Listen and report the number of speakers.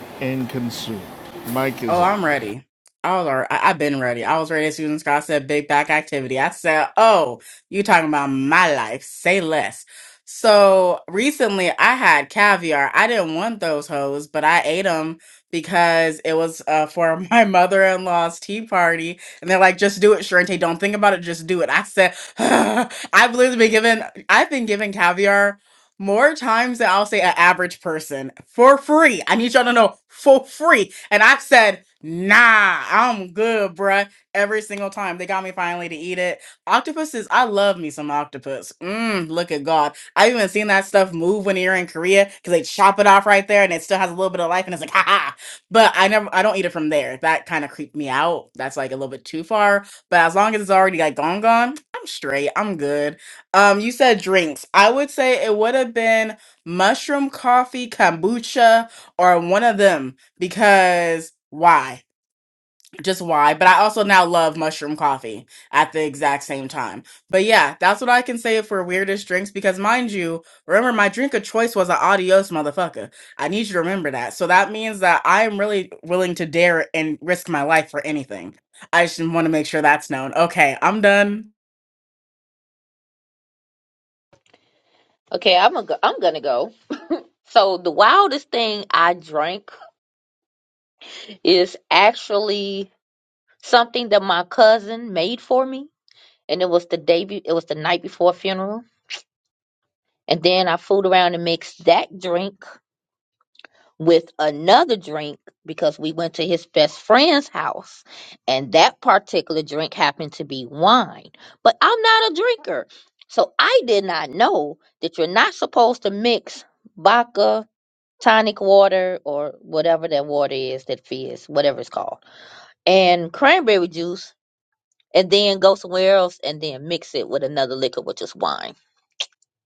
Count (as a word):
three